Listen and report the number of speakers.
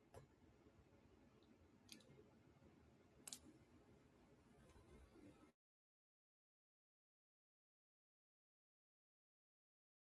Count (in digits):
0